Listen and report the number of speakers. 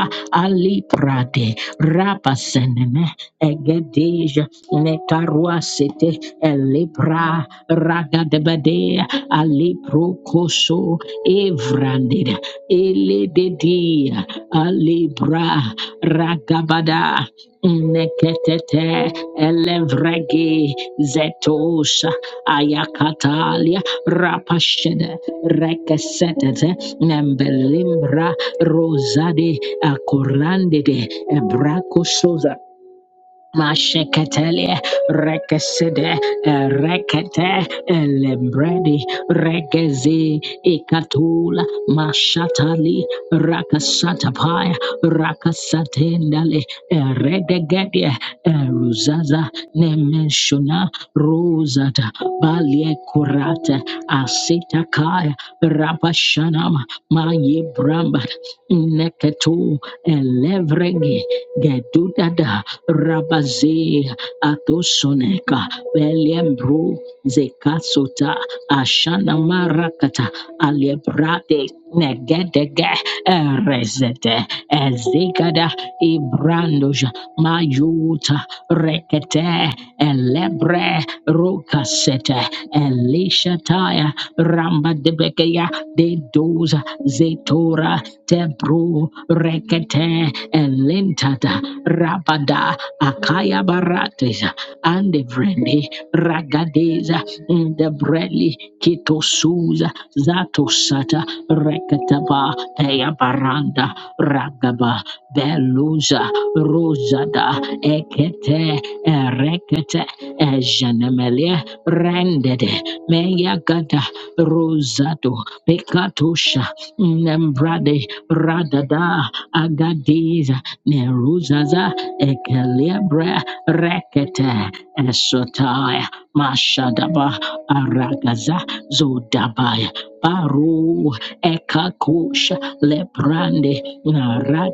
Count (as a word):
one